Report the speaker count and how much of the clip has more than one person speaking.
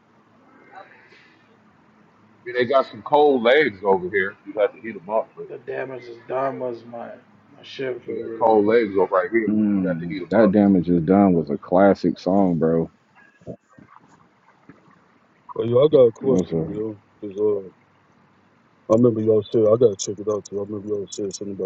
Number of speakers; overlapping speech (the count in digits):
4, about 10%